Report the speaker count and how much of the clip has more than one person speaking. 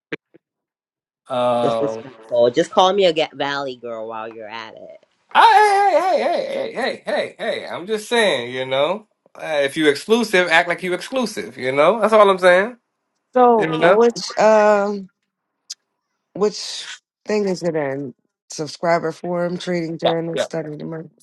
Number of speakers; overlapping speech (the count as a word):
three, about 6%